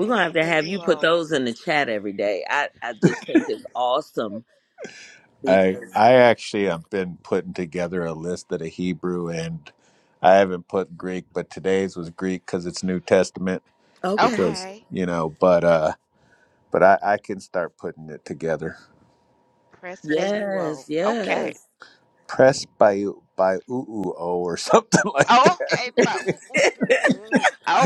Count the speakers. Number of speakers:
3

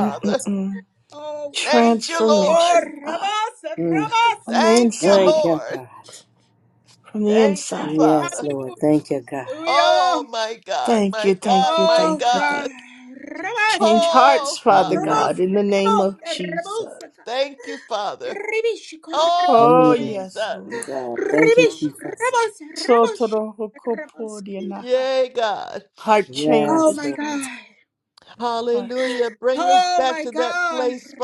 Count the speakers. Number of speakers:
4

